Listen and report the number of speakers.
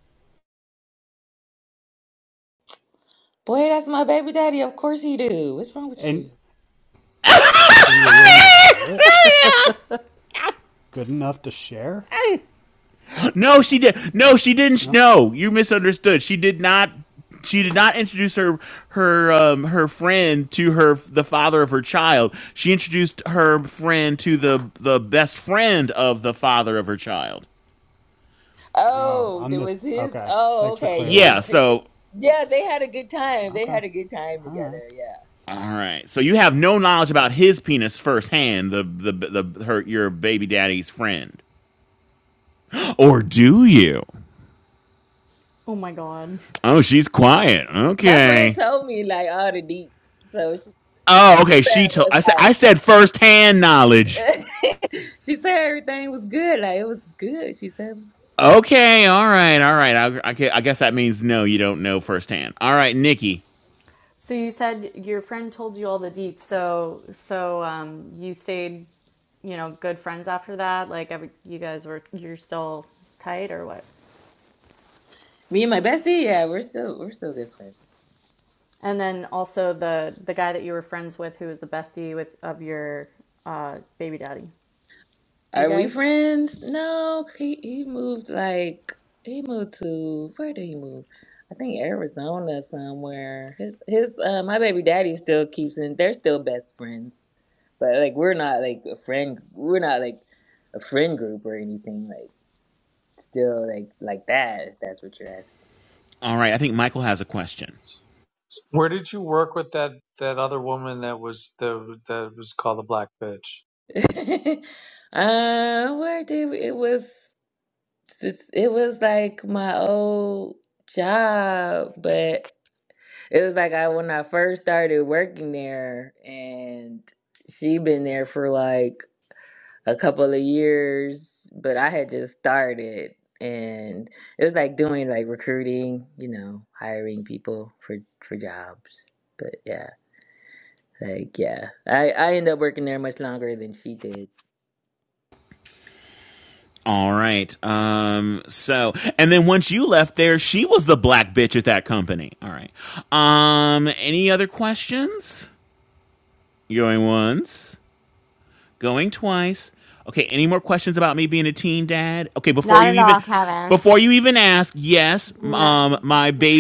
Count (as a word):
six